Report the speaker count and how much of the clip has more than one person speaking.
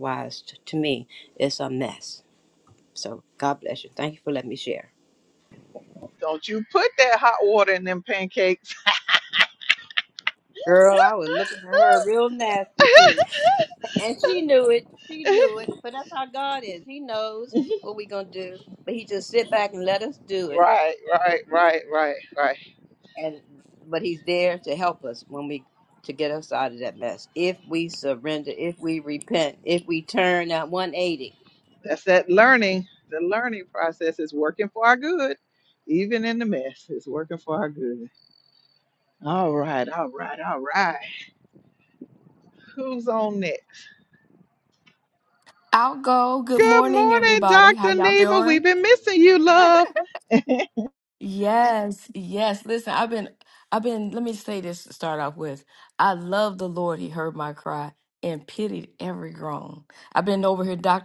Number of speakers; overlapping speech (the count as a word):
three, about 3%